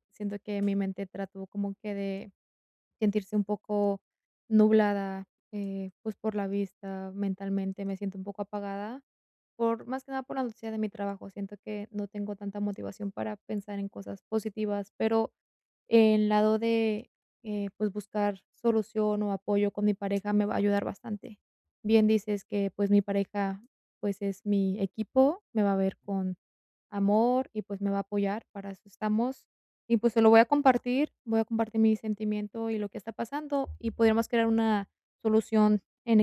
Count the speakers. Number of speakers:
one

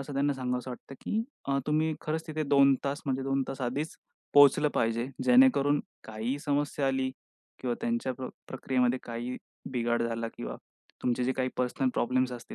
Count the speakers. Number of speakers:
one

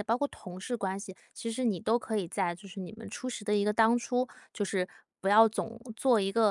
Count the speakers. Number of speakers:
one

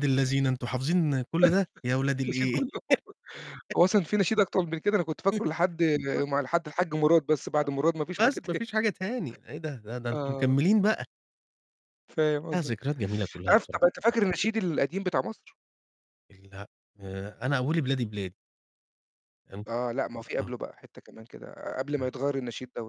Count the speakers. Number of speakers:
two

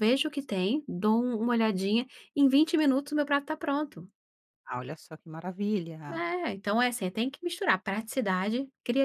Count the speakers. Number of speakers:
two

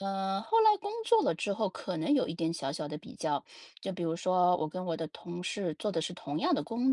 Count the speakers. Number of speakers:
one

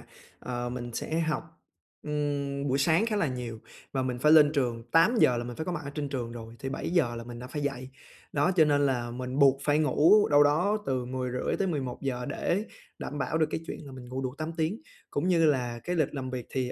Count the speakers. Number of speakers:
one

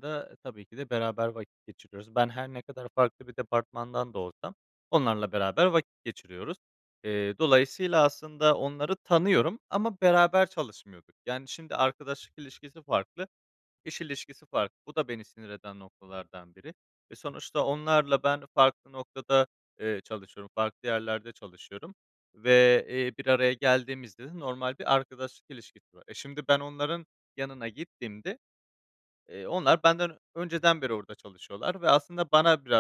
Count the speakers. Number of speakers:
one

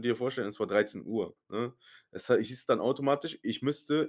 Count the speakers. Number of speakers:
one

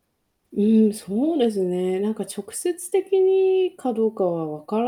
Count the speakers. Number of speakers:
one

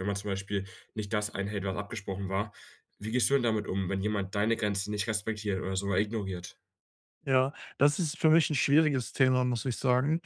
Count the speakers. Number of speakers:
two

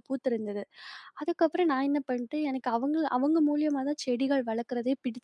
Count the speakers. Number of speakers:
one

